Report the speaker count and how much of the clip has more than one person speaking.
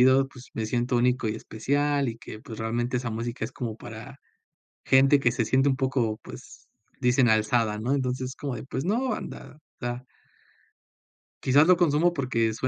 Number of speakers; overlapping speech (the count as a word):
one, no overlap